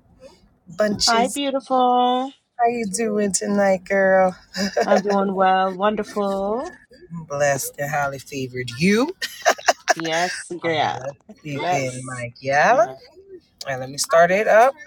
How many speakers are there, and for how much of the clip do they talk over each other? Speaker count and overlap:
2, about 8%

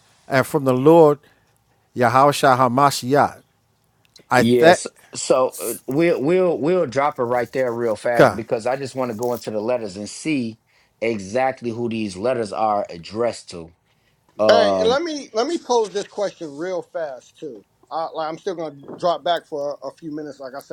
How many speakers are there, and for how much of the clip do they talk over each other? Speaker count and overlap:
3, about 5%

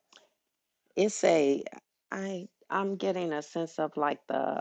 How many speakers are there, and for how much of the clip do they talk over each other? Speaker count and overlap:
1, no overlap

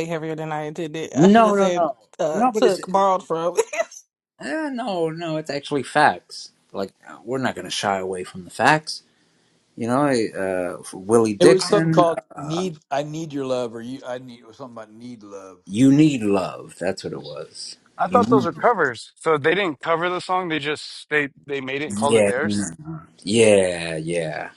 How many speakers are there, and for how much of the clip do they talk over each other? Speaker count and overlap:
4, about 14%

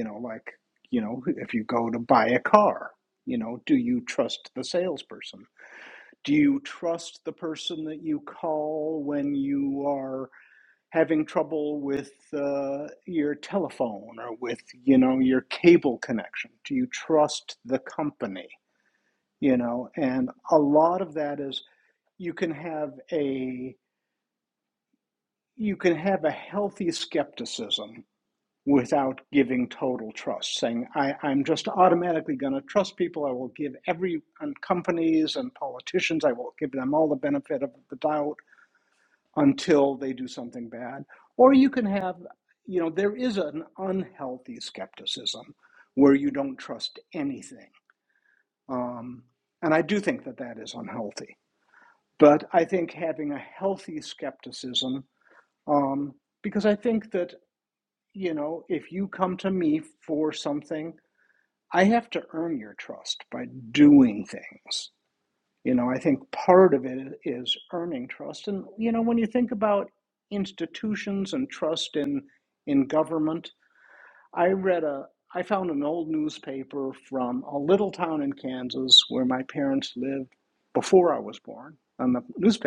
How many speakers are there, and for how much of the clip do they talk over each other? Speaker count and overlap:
1, no overlap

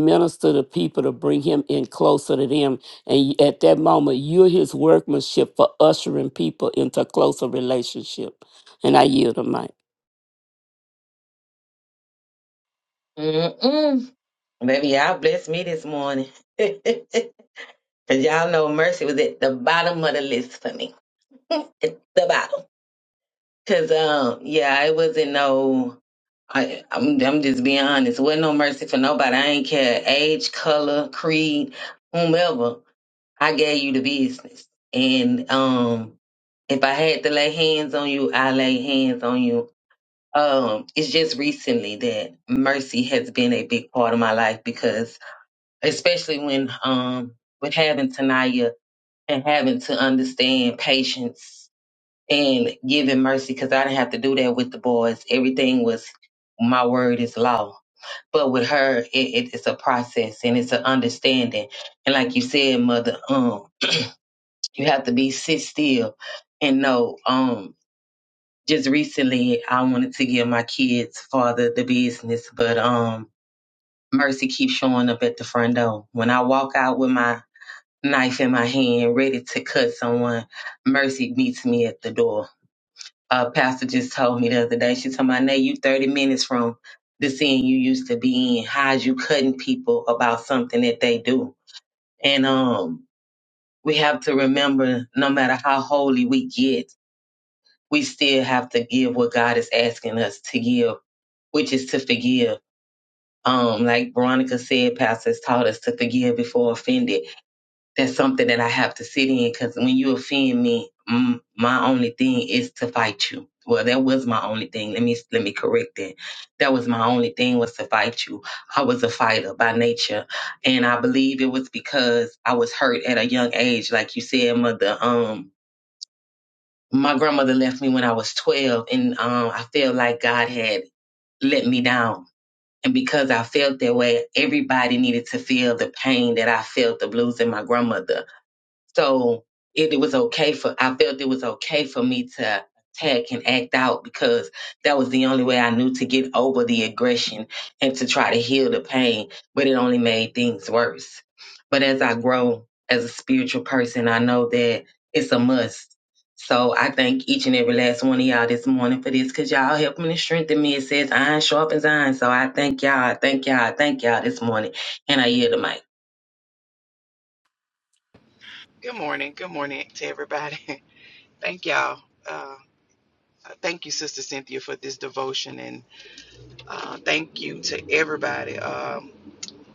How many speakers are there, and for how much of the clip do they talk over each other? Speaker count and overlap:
3, no overlap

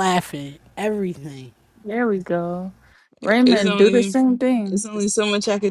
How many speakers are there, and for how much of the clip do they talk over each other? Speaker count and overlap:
3, about 14%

